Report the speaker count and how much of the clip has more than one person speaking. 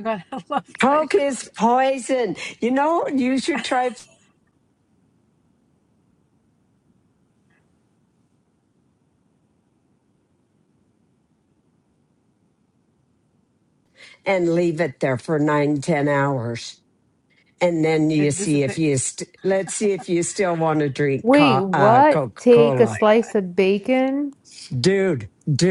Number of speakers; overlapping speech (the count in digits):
3, about 11%